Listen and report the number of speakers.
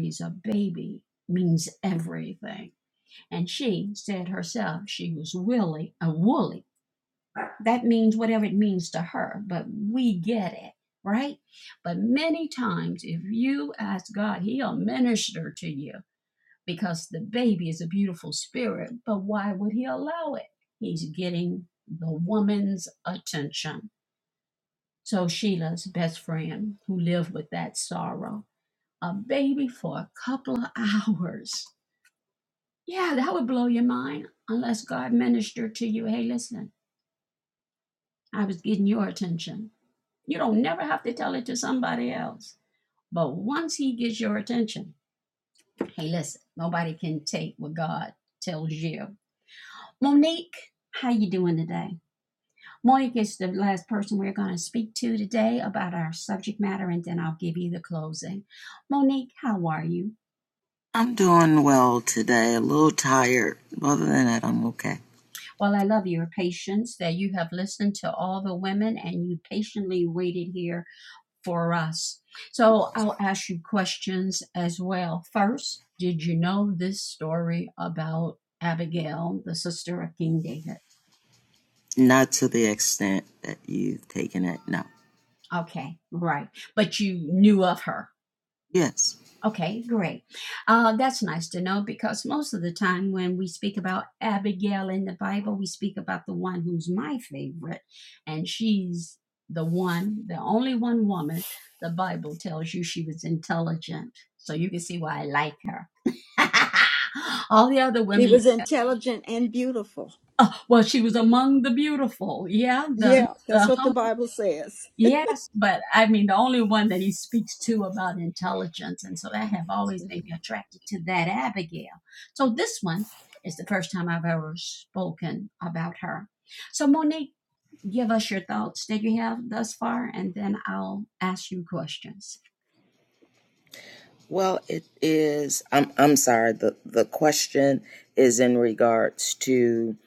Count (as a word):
three